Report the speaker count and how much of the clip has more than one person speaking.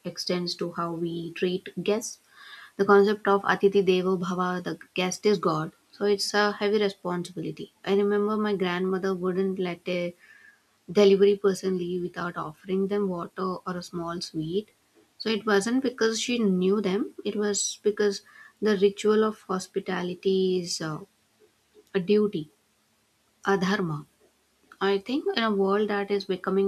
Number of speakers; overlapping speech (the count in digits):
1, no overlap